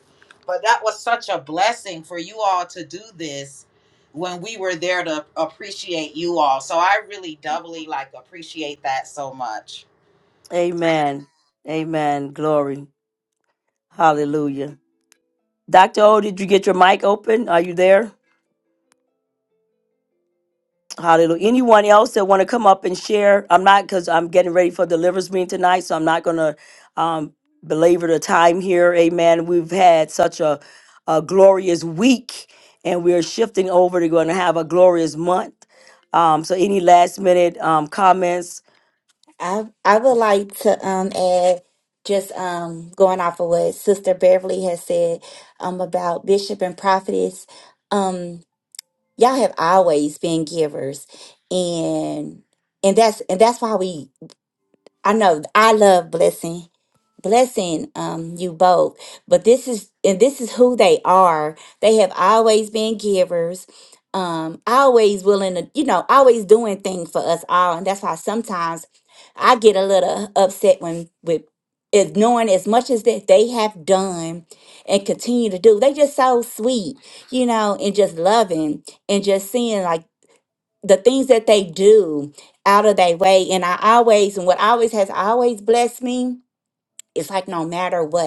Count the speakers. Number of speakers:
three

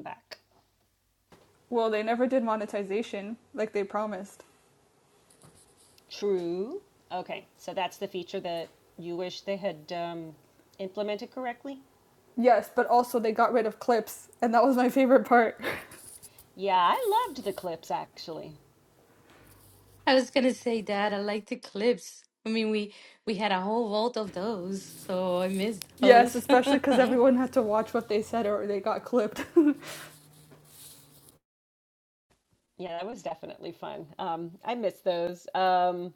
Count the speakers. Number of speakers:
three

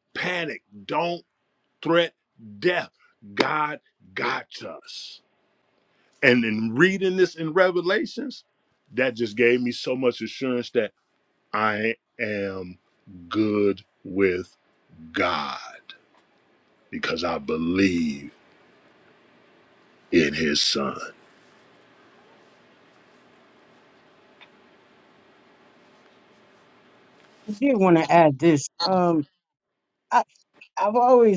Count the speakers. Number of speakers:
two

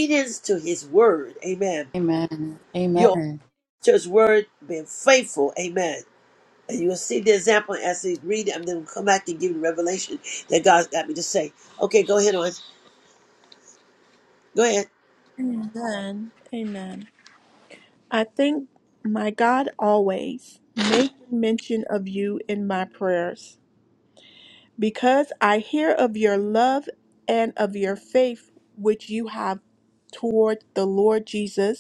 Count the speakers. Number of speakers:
three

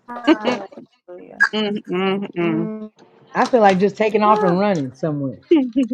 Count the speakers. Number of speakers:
three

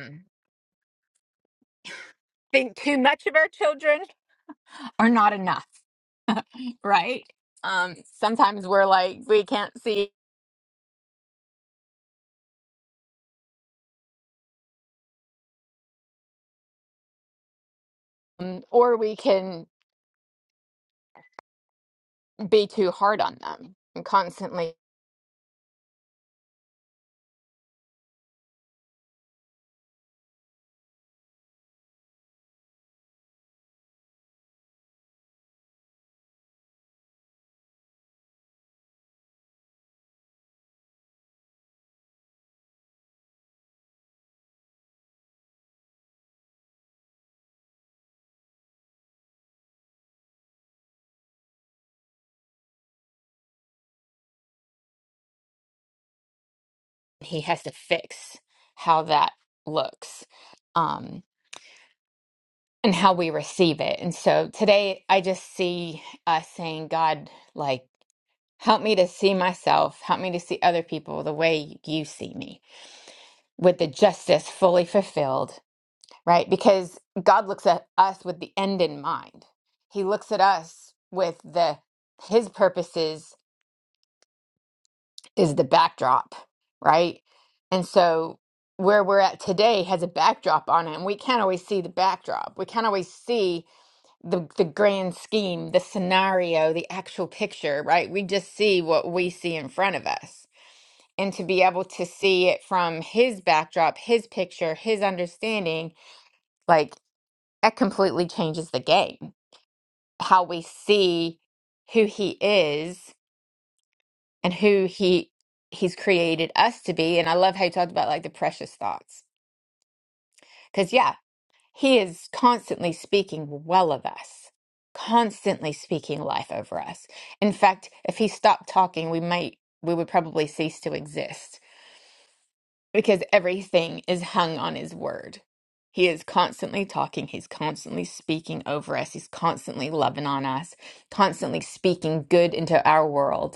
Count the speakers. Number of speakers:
one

